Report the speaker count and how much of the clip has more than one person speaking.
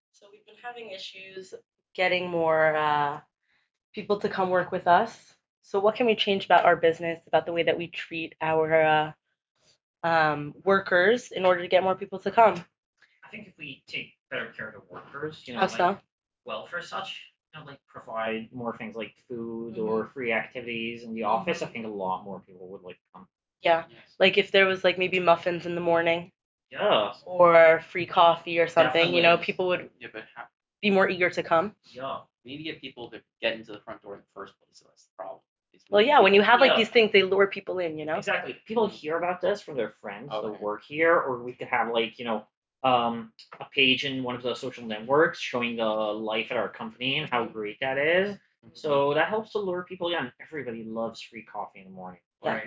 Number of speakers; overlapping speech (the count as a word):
three, about 9%